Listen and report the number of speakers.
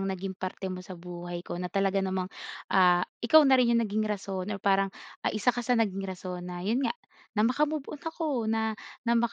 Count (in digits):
1